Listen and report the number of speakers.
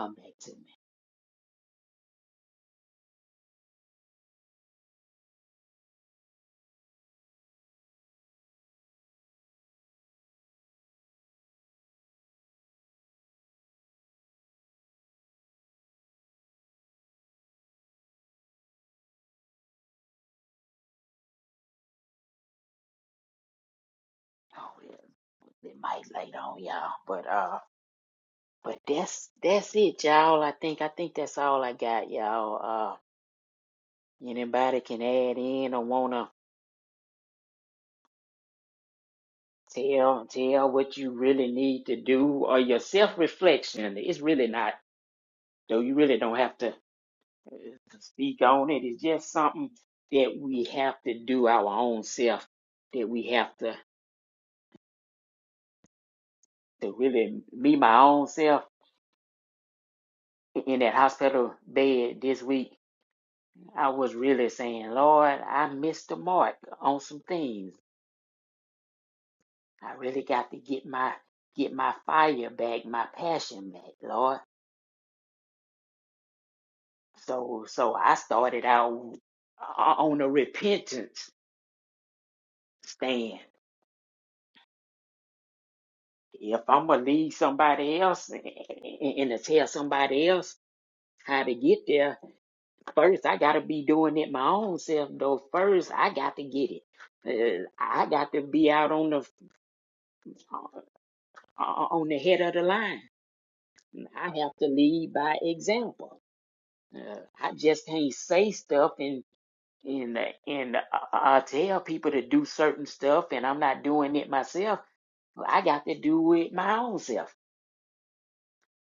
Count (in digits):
1